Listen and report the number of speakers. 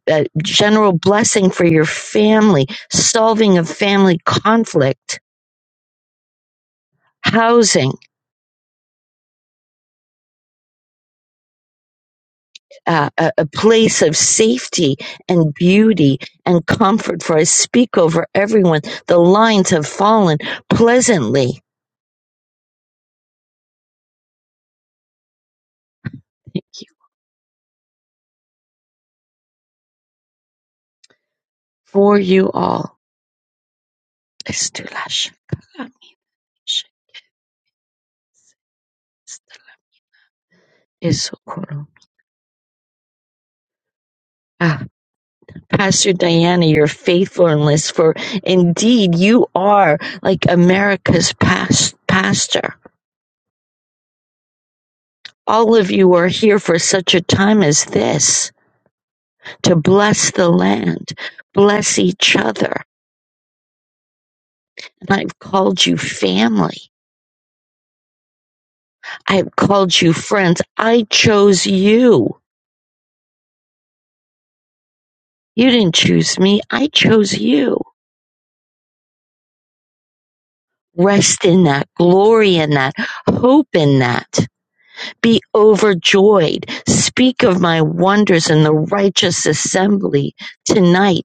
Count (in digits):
1